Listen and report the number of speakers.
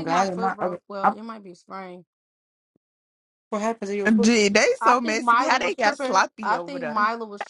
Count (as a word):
three